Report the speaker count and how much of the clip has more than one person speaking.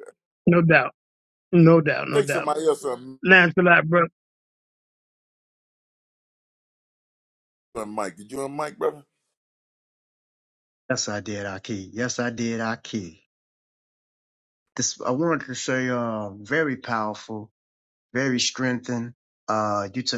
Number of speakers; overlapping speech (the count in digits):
3, about 2%